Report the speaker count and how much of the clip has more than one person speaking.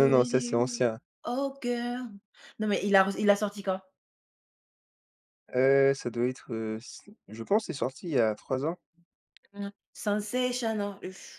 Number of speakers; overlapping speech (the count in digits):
2, about 7%